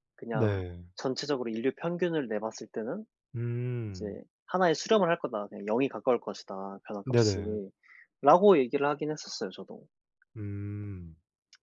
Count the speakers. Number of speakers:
2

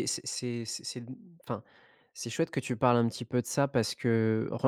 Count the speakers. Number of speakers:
1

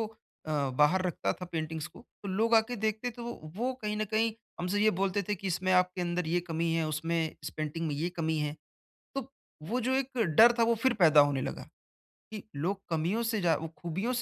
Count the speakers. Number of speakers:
1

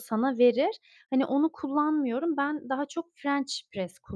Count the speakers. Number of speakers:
1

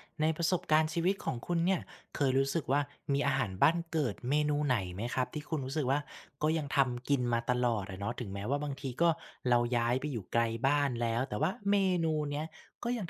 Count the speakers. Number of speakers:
1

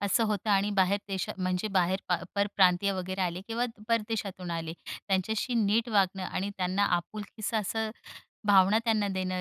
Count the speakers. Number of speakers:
1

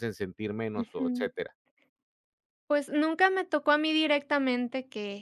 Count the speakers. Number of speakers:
2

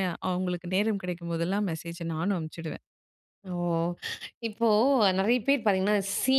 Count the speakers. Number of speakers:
2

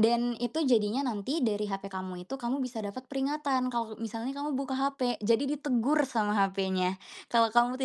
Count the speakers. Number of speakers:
1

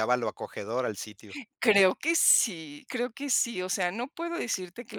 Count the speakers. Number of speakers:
2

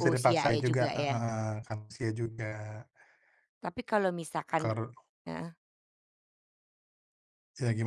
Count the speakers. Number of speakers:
2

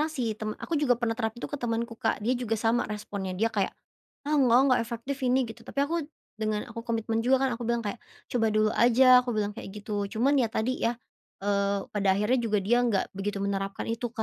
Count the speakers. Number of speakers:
1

